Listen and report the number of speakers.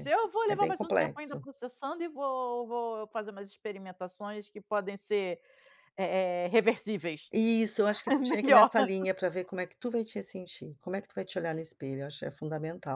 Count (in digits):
2